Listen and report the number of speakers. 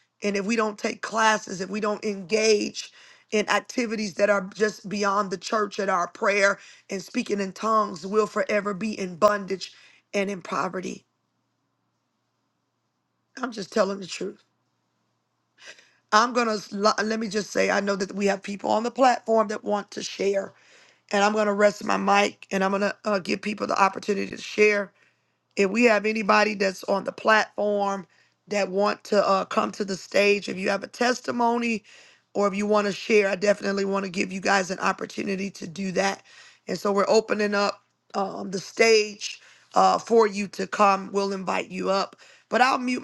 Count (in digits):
1